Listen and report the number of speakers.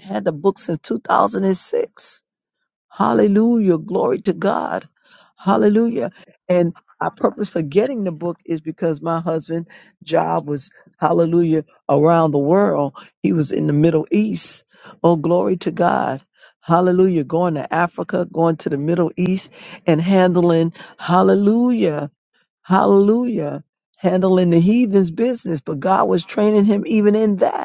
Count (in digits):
1